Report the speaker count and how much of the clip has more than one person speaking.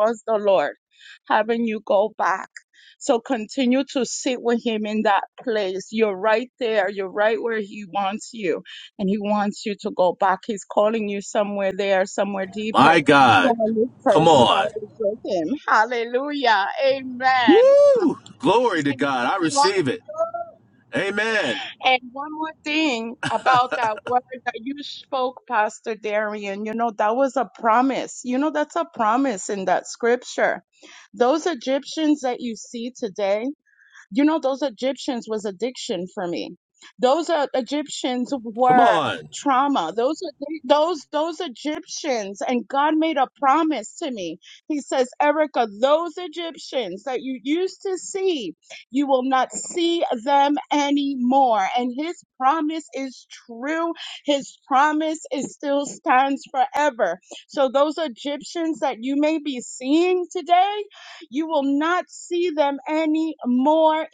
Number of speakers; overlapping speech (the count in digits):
2, about 2%